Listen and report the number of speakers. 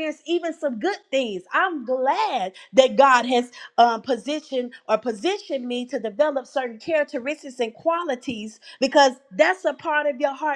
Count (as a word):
one